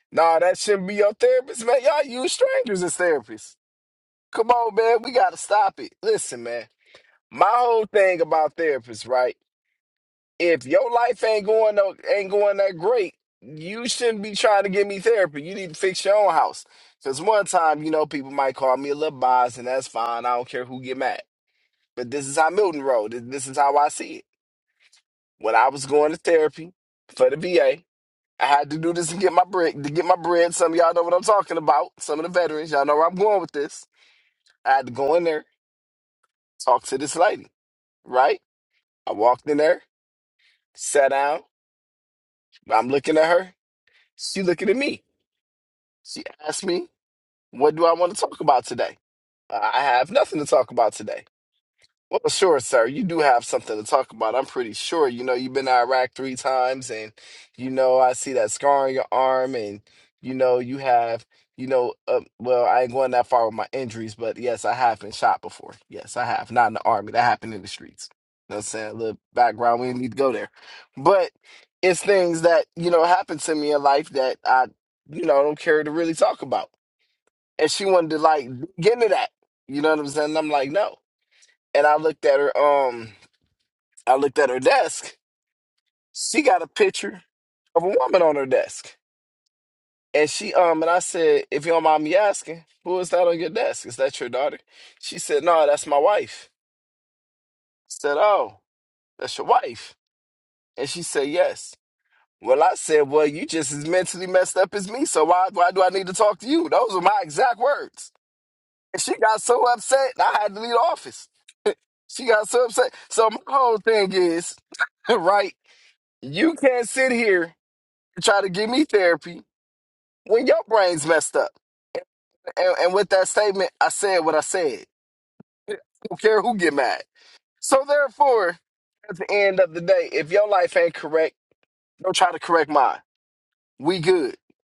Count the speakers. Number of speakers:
1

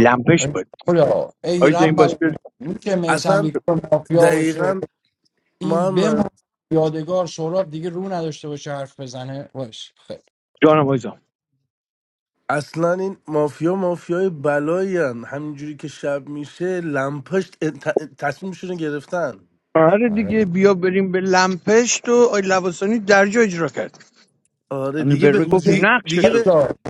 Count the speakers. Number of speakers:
3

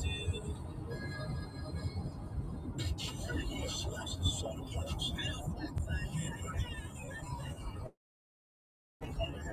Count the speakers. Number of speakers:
0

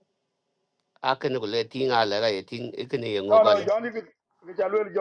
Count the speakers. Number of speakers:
2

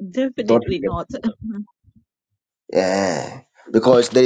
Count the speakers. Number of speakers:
2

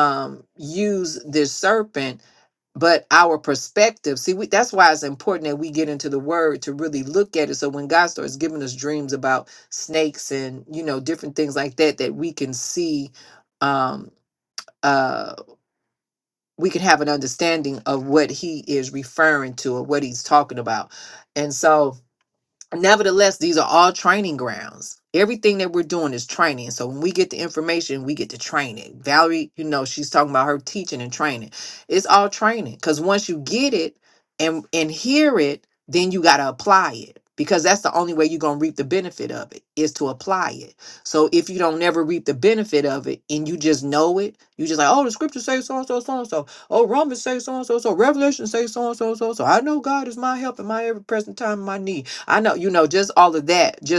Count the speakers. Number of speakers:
1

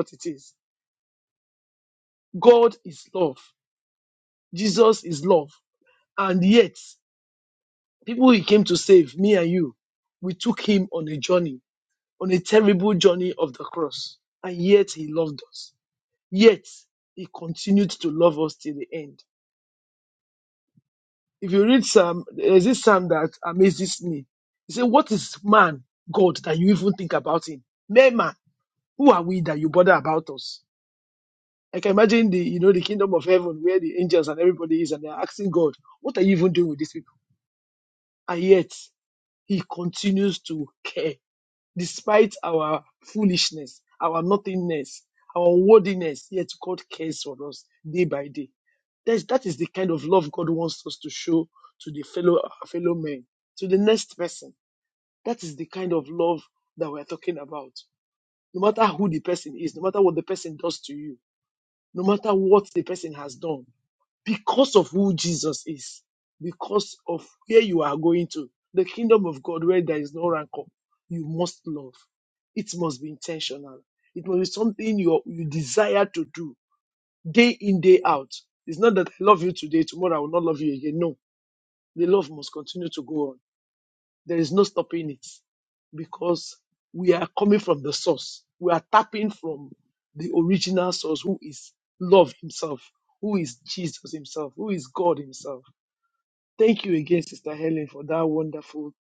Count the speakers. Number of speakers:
1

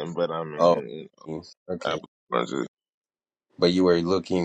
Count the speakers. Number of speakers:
2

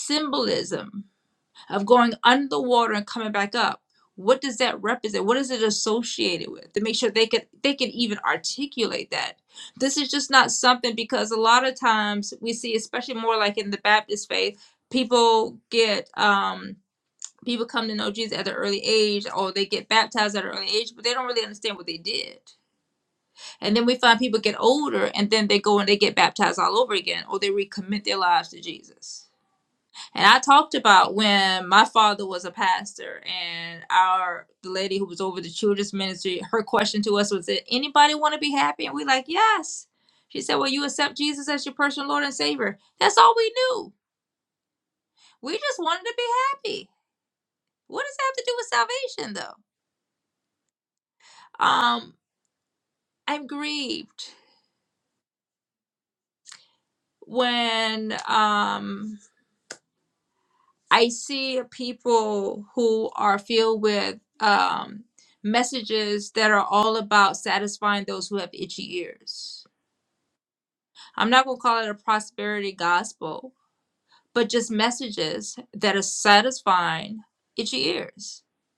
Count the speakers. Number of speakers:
1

